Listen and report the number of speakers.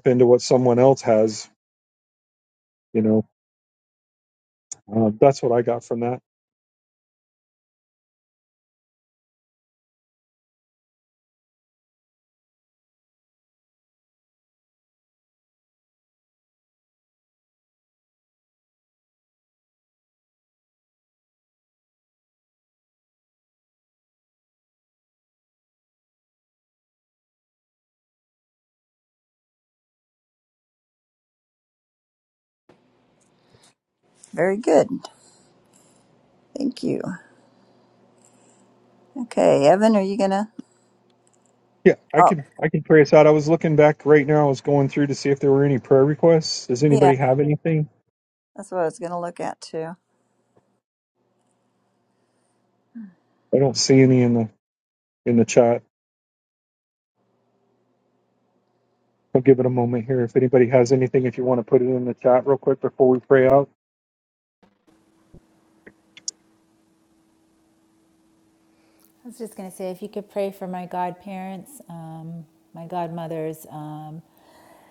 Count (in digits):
3